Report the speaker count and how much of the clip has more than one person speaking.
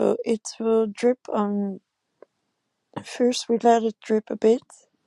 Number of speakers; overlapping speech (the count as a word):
one, no overlap